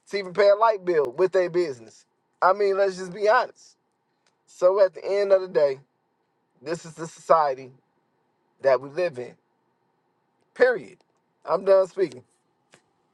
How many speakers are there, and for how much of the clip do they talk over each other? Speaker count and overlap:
1, no overlap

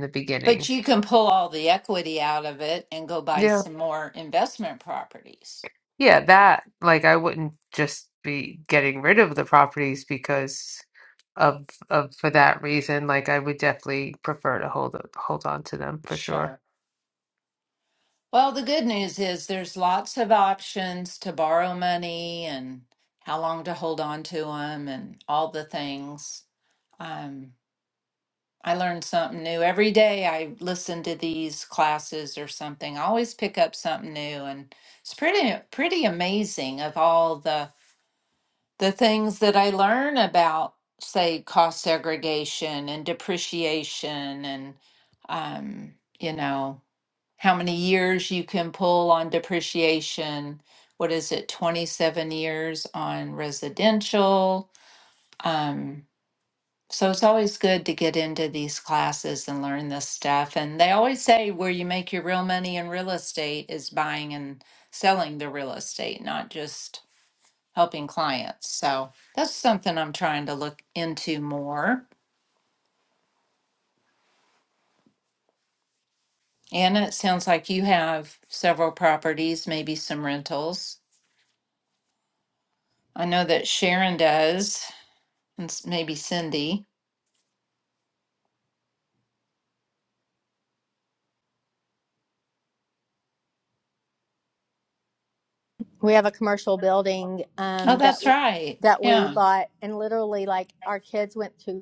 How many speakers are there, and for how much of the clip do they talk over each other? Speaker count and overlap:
3, about 2%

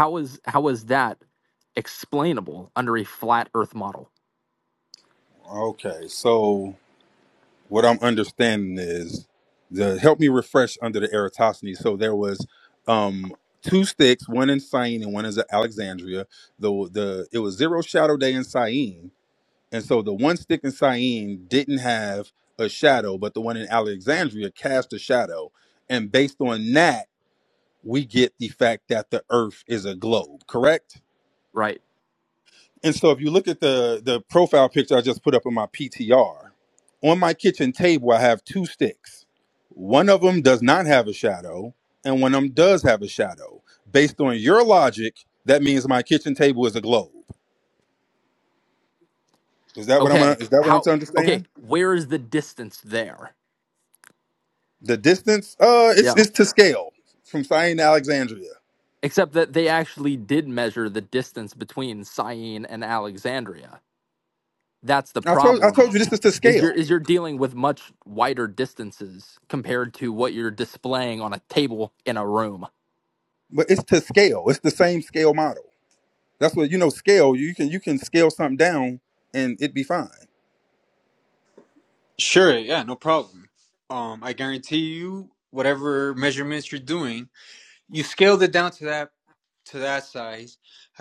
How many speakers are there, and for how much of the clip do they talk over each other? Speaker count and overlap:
3, about 3%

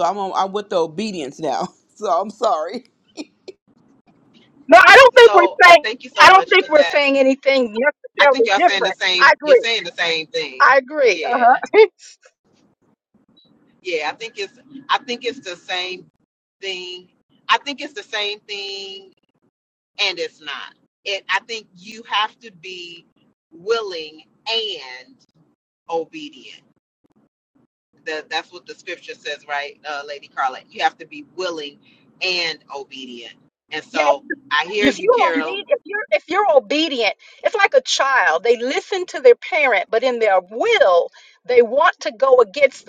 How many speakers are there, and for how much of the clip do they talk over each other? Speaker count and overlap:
3, about 10%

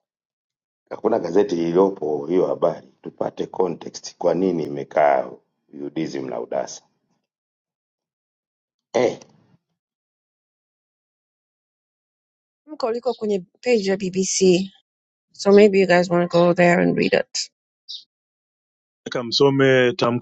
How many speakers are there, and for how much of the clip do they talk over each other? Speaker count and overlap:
3, no overlap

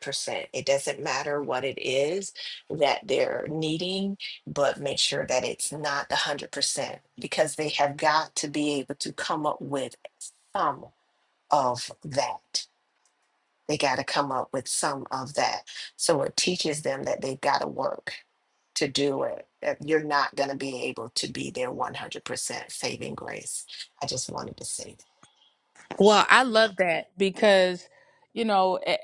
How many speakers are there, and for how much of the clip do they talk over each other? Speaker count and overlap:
2, under 1%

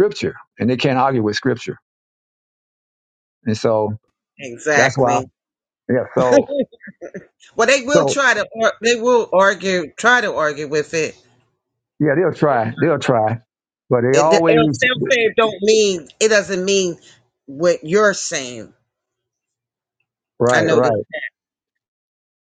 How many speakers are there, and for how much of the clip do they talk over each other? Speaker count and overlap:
2, about 8%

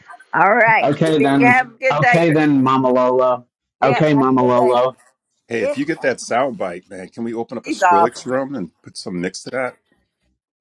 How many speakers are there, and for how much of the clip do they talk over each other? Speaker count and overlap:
3, about 30%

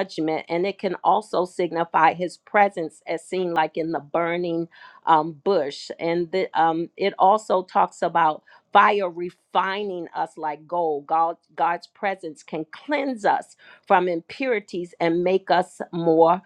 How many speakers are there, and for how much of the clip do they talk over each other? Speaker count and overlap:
1, no overlap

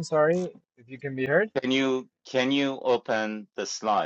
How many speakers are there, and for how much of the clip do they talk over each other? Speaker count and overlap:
2, no overlap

